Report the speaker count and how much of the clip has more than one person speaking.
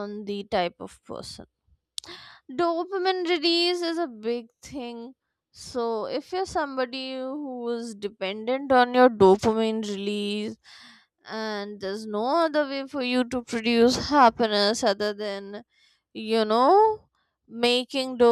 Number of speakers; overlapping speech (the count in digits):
1, no overlap